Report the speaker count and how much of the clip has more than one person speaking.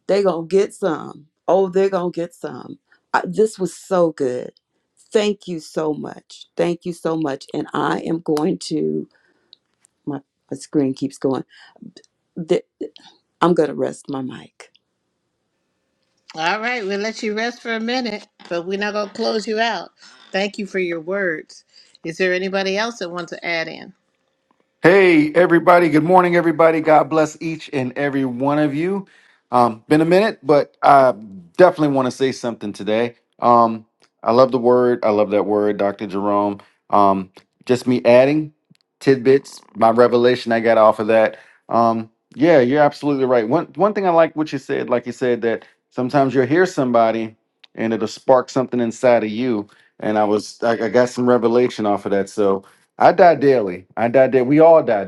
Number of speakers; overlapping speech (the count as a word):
three, no overlap